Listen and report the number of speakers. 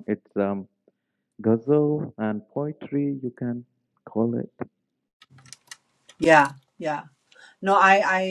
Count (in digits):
2